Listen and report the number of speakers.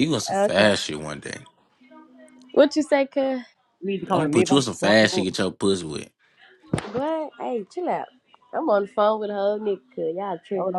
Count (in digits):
3